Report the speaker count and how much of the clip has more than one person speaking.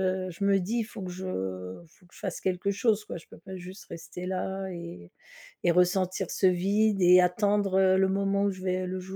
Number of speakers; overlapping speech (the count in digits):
1, no overlap